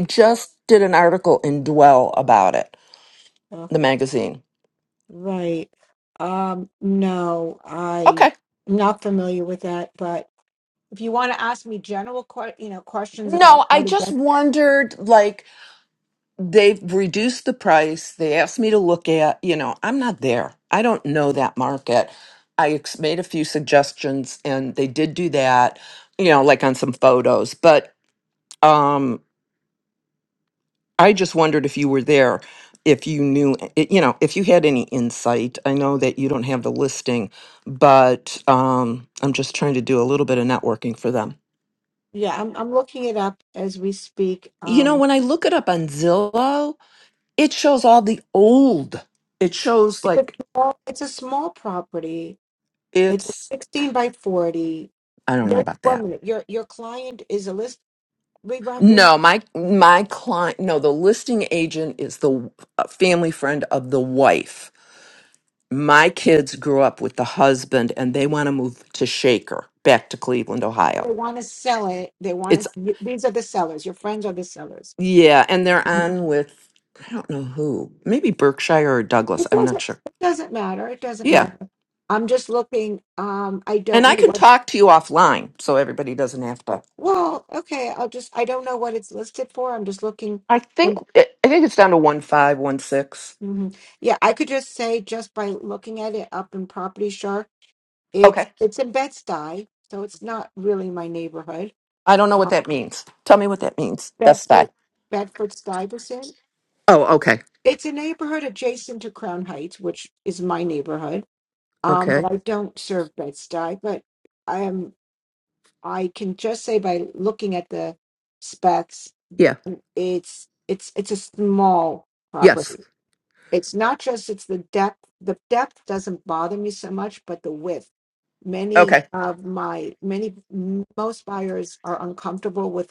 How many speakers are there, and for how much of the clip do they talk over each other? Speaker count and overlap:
2, about 4%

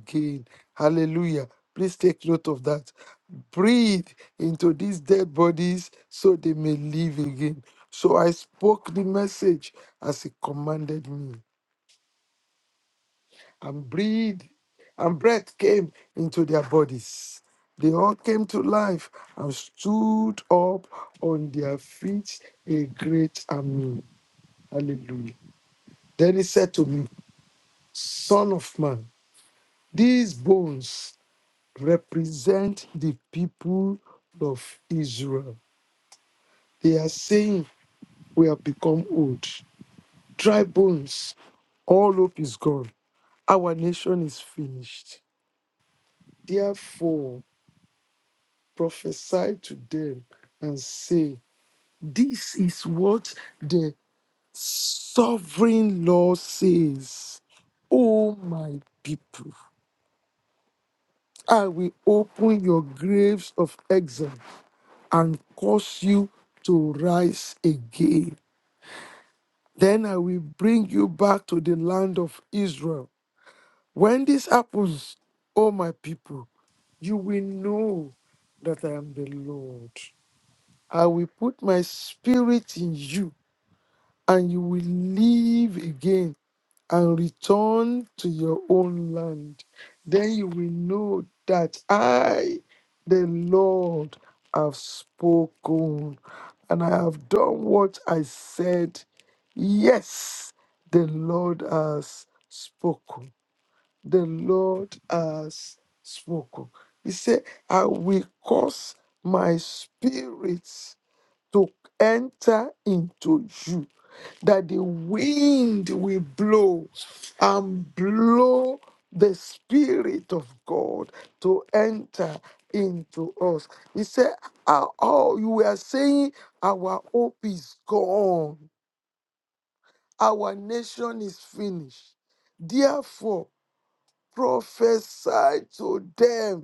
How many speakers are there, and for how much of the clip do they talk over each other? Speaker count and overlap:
1, no overlap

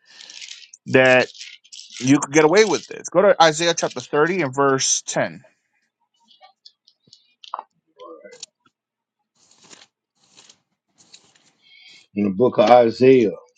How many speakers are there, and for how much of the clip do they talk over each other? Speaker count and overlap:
2, no overlap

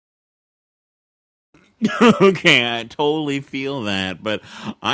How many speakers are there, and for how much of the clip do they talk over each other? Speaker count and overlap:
1, no overlap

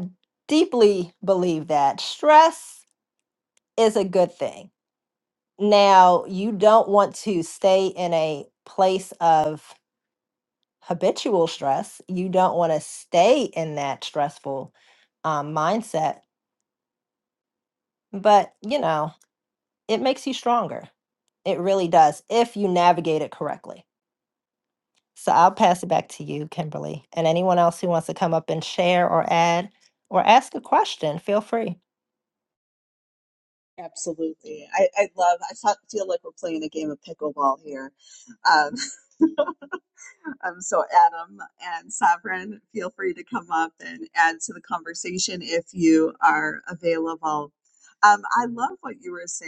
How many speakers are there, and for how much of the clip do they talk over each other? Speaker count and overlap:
2, no overlap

